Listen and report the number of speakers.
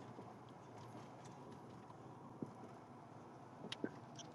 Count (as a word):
zero